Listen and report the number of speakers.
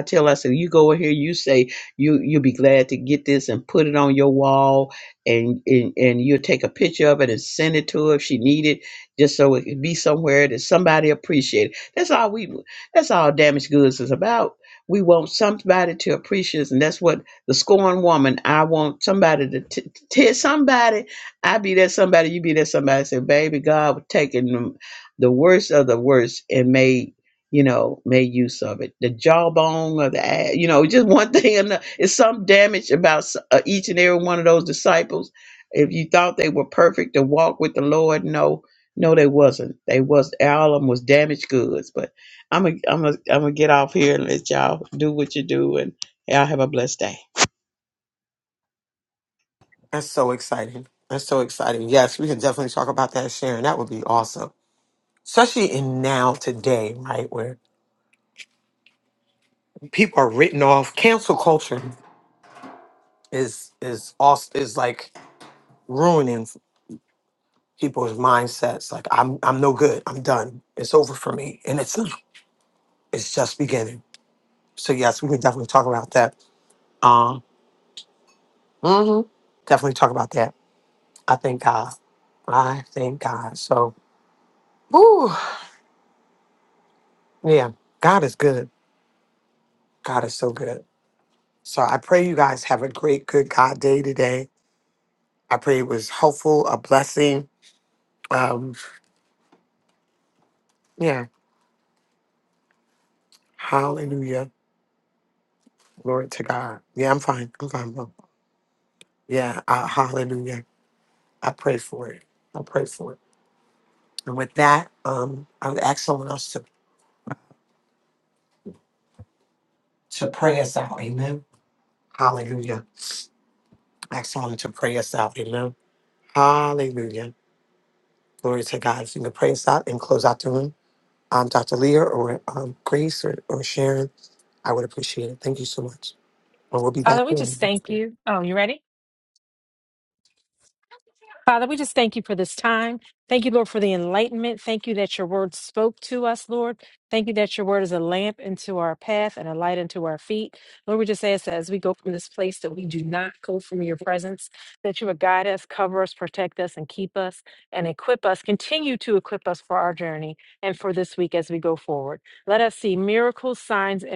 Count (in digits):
3